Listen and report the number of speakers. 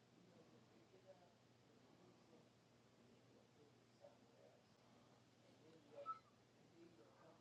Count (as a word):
zero